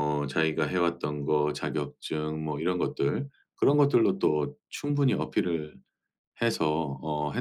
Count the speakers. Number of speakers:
1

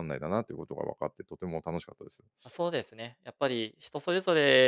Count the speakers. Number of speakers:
2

